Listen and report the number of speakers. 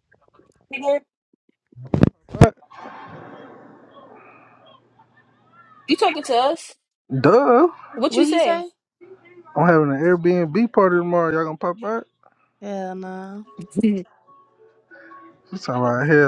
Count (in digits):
3